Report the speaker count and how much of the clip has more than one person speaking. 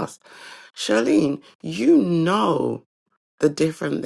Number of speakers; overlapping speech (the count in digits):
1, no overlap